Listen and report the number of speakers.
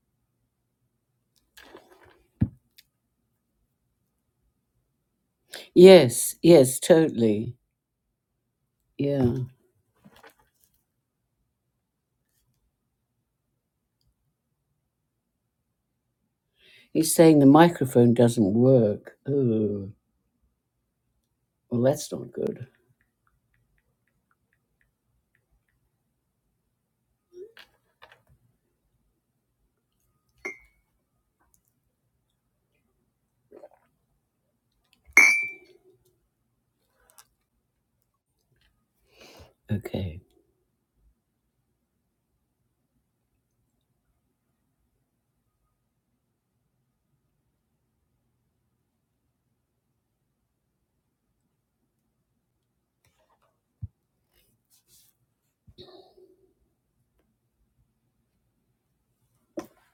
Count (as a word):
one